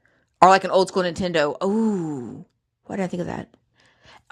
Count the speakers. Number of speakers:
1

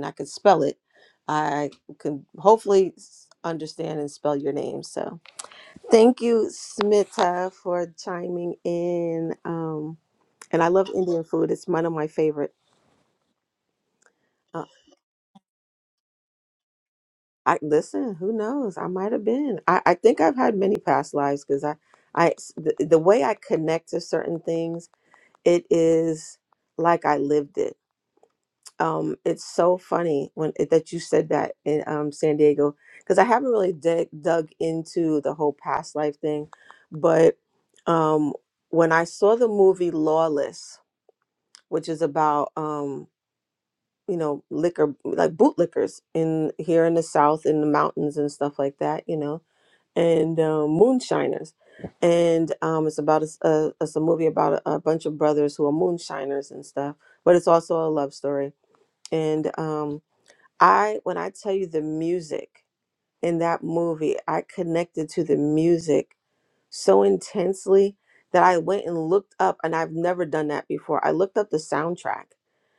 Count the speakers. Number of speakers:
1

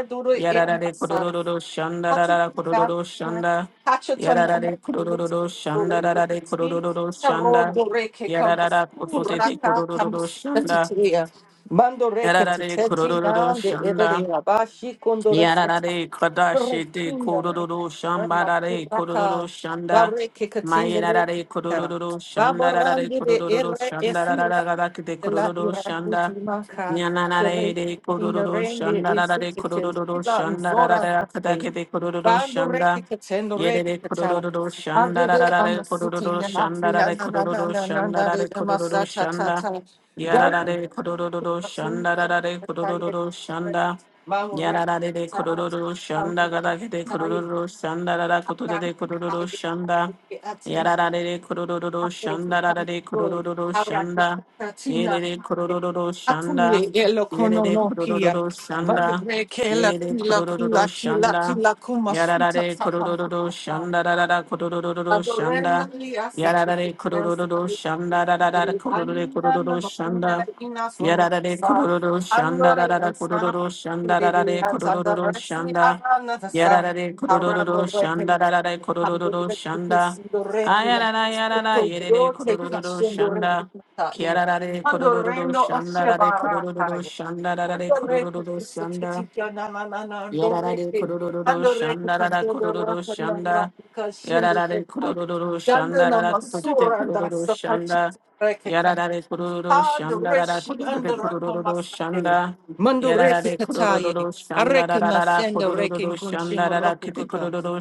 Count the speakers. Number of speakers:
2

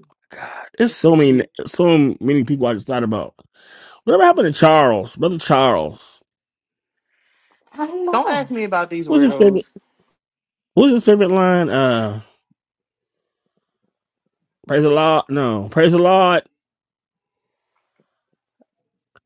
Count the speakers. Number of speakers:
3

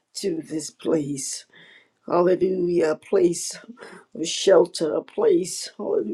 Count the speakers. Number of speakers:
1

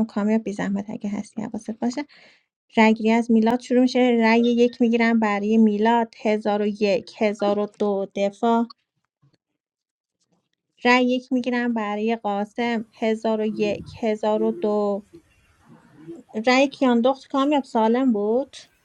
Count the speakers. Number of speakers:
1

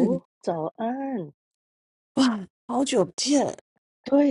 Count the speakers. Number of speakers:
2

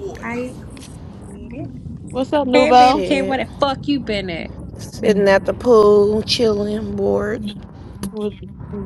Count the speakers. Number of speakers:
3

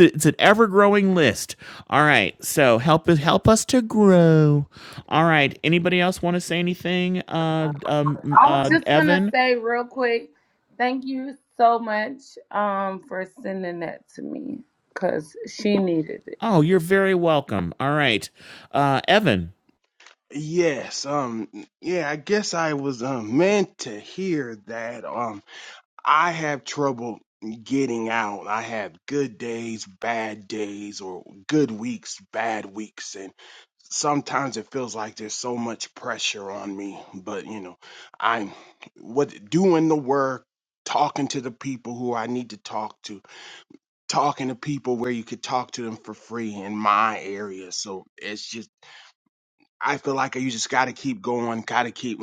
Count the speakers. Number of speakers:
3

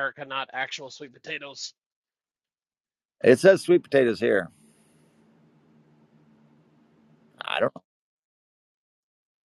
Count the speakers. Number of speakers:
2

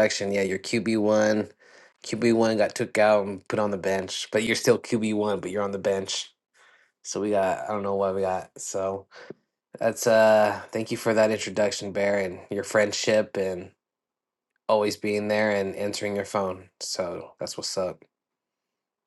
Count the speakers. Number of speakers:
1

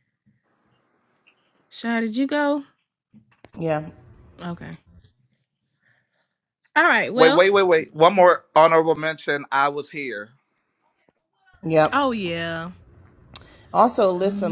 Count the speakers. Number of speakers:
3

